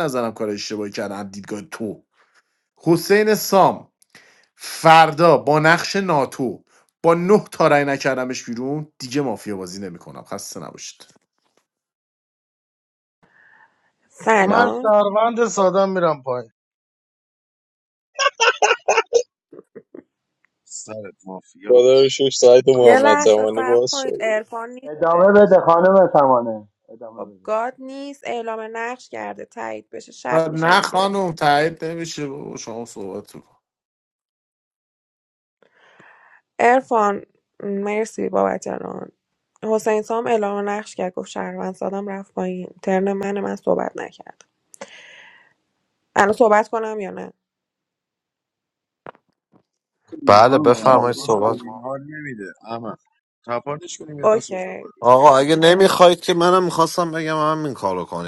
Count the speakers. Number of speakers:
7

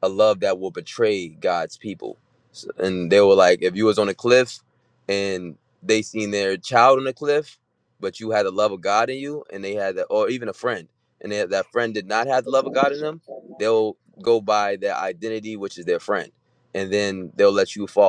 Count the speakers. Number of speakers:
1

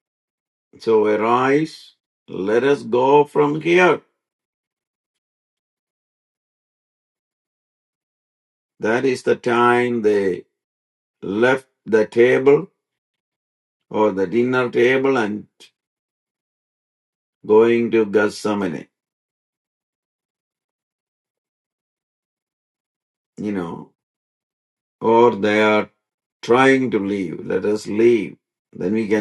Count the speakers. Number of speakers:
1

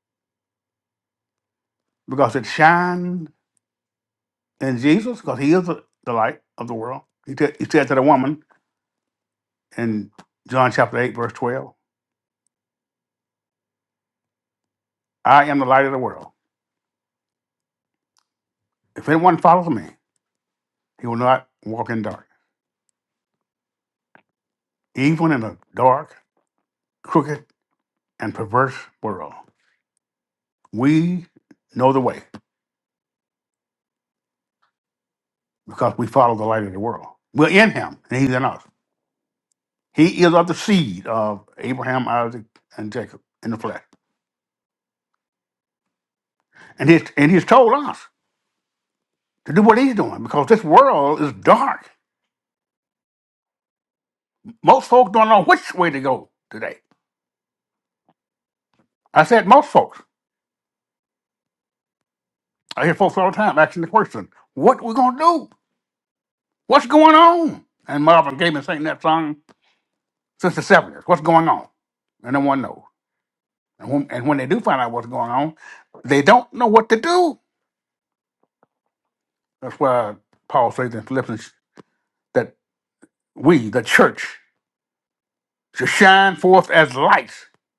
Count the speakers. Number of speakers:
1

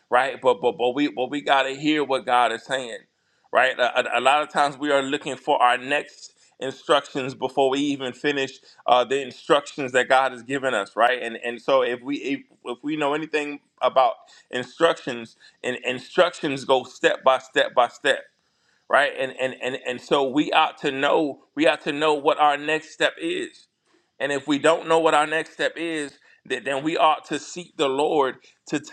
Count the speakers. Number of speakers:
1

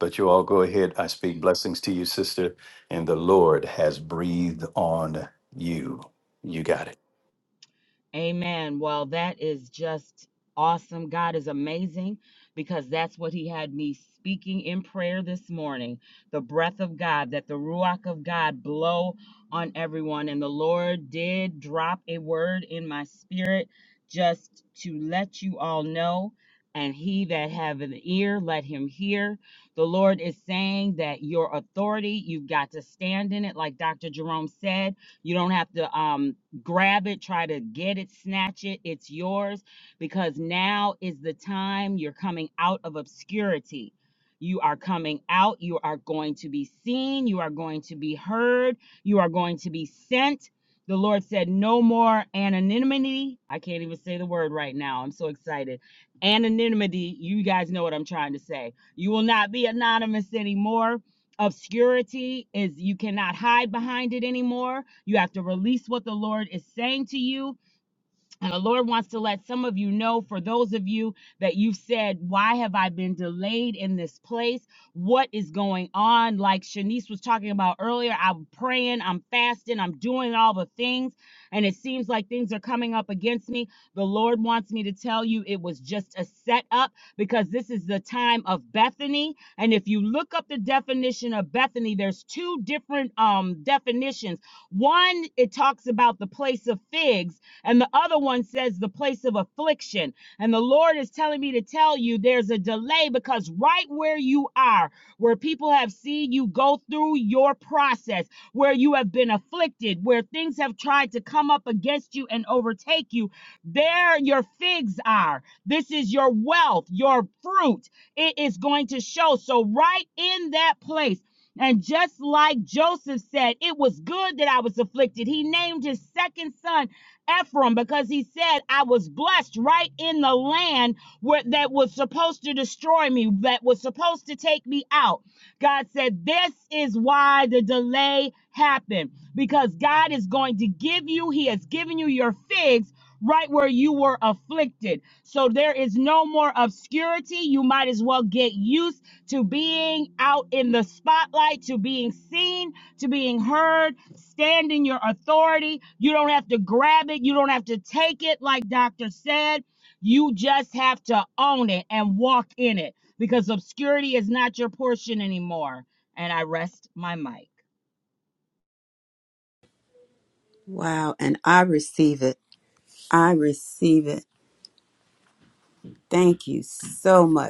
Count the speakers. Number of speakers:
3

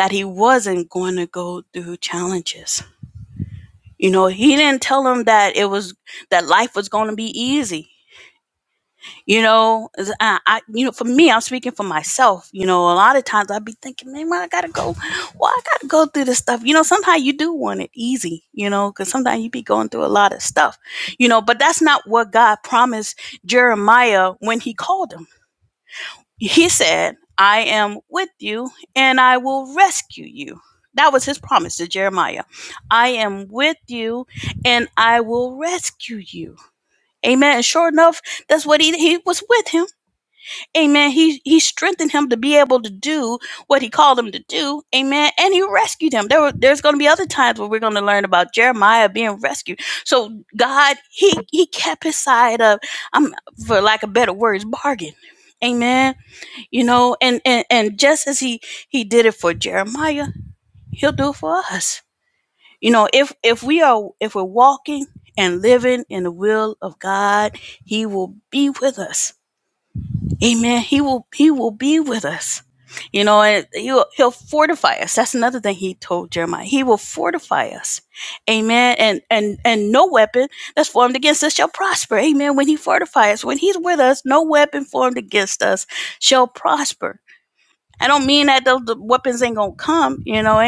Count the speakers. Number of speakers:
1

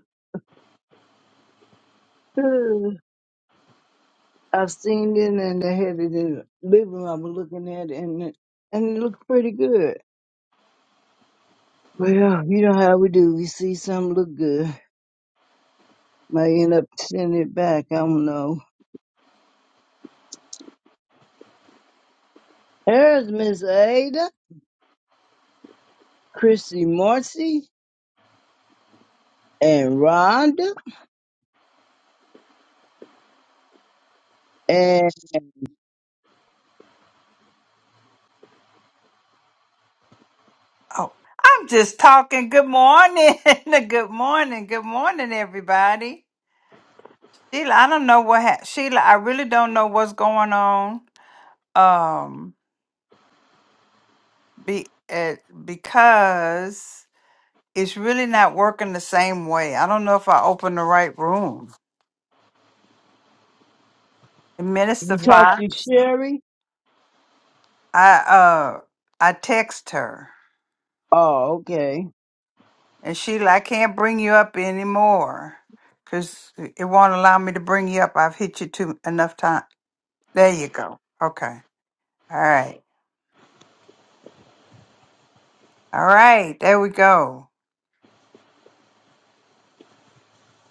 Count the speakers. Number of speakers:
2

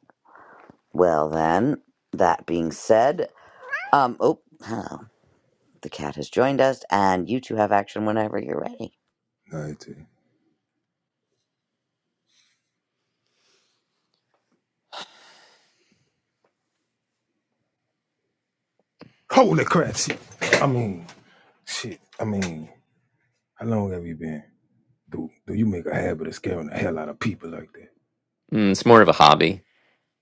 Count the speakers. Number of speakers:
3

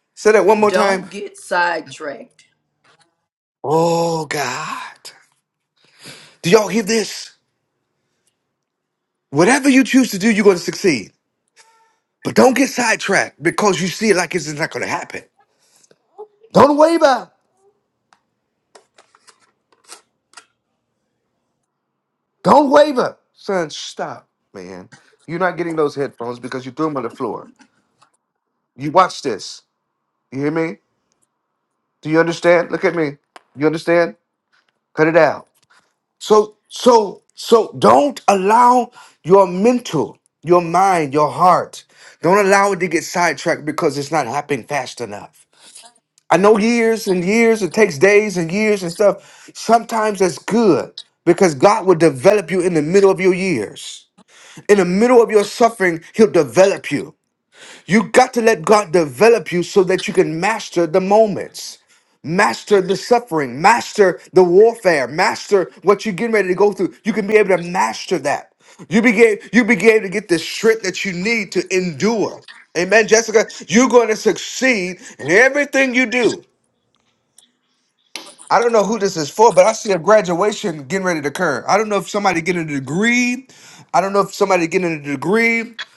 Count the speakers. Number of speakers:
2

